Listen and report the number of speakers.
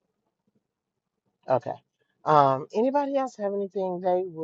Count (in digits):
1